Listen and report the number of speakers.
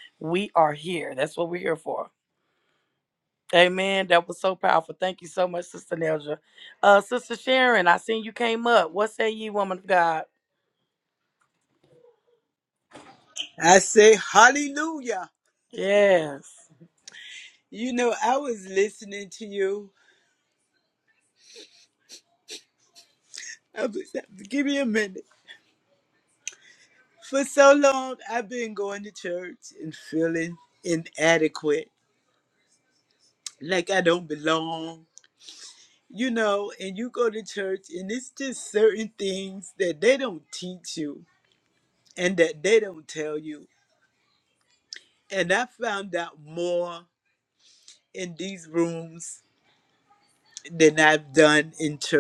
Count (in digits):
2